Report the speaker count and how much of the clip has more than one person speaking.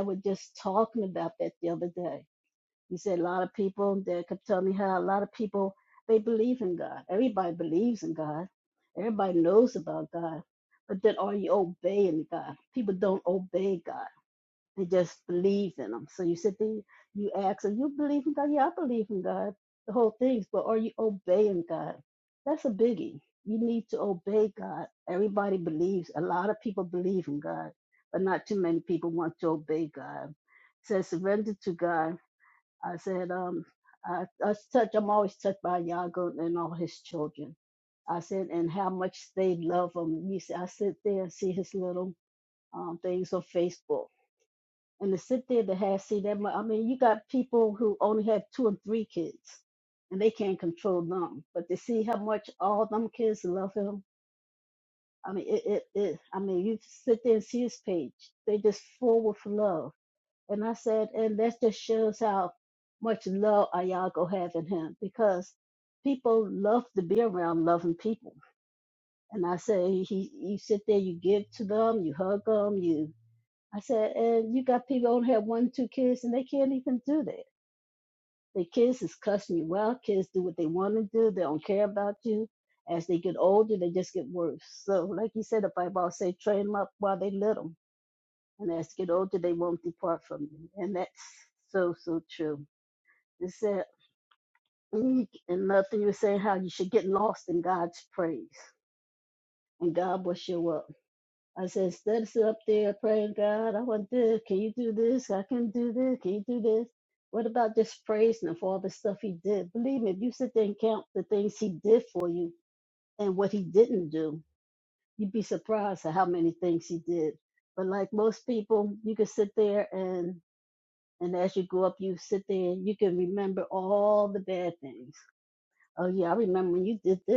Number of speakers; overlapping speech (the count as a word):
one, no overlap